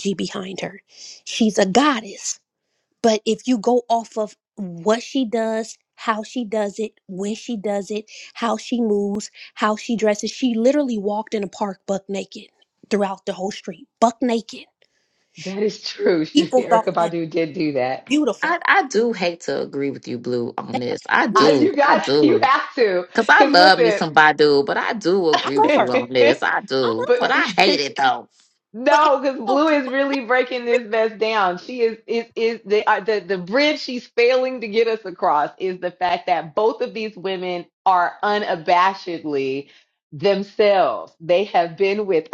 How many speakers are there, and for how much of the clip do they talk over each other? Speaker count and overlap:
3, about 12%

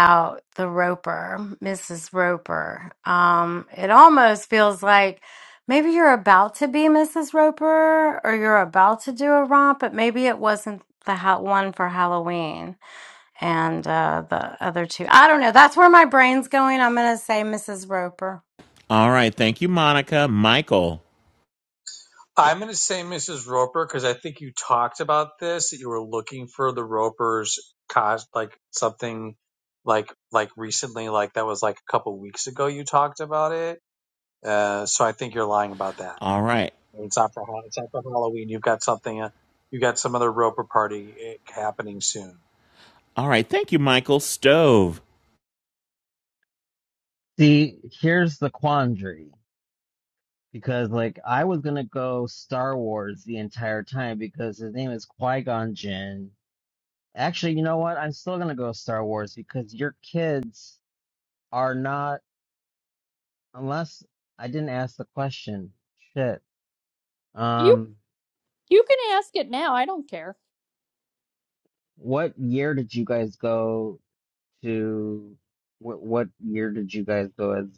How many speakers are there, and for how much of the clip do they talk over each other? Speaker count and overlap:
5, under 1%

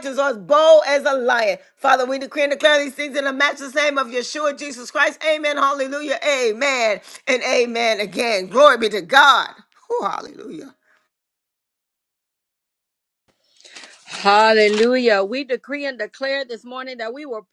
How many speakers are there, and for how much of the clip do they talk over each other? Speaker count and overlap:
2, no overlap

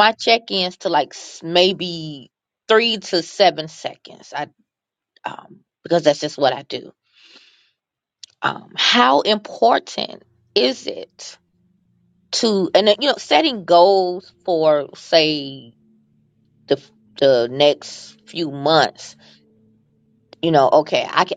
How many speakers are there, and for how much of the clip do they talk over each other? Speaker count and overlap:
1, no overlap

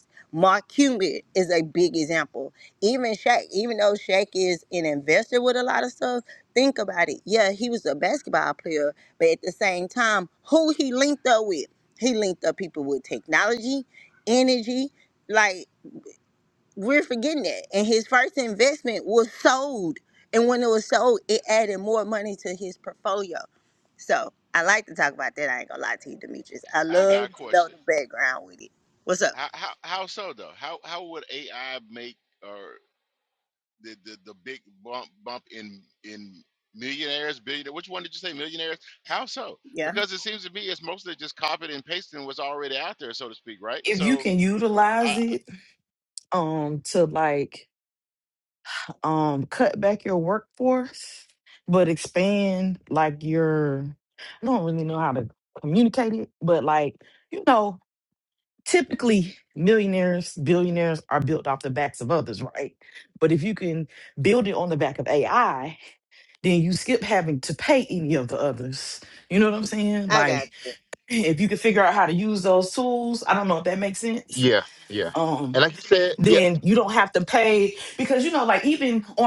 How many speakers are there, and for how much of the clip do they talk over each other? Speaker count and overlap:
4, about 3%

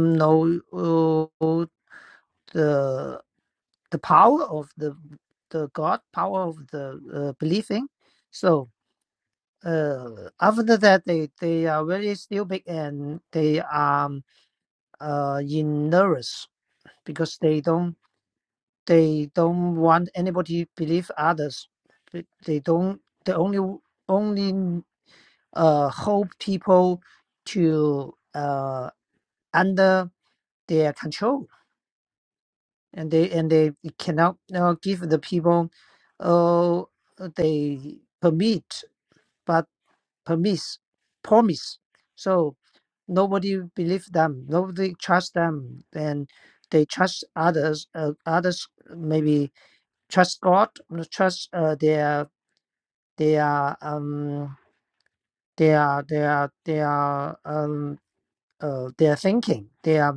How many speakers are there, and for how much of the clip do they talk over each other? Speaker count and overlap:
1, no overlap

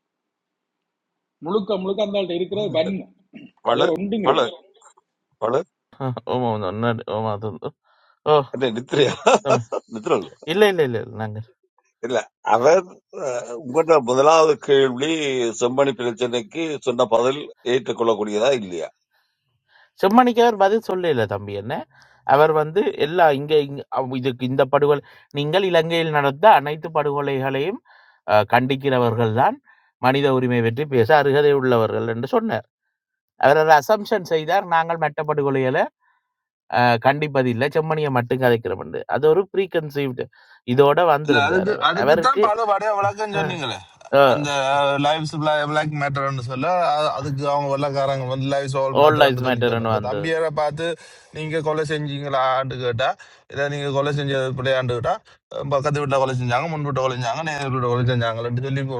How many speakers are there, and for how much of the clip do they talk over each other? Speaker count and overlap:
4, about 5%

